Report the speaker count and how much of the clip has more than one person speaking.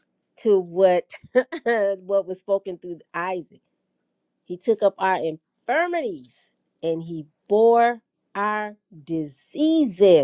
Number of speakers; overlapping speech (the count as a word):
one, no overlap